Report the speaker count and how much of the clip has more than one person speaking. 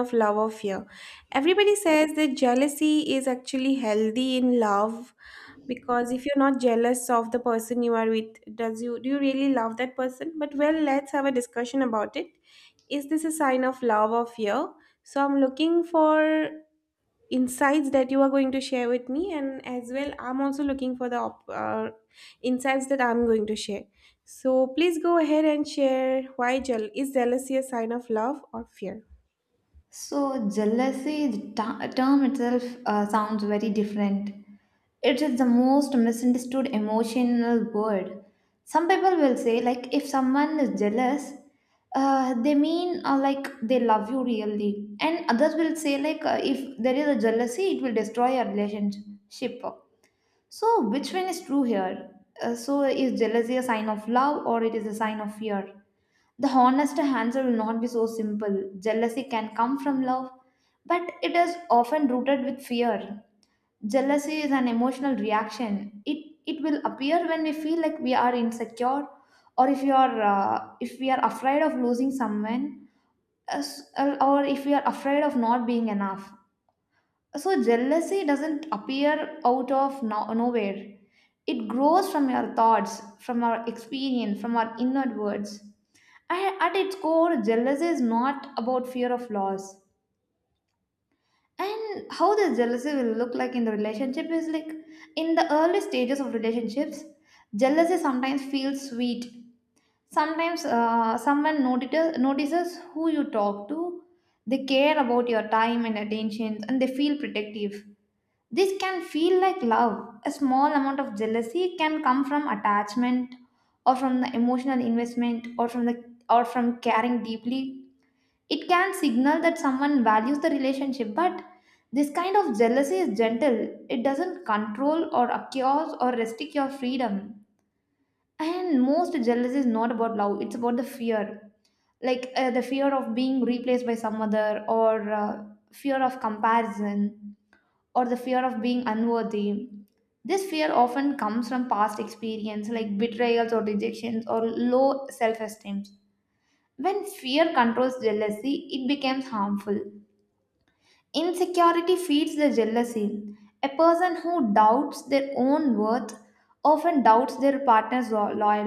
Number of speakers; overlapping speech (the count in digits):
2, no overlap